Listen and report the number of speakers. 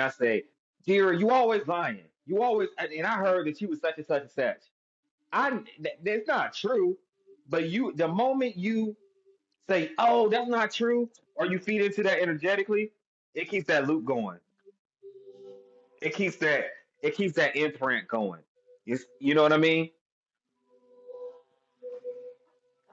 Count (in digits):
1